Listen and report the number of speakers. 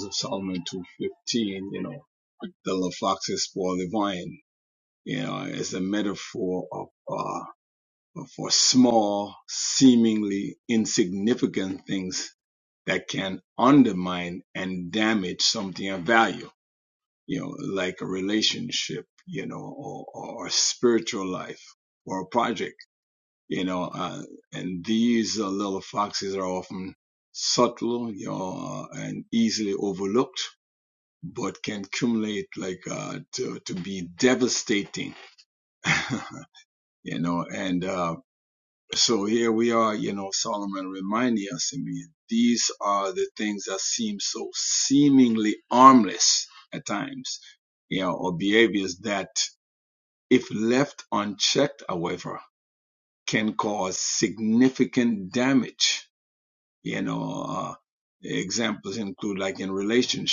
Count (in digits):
1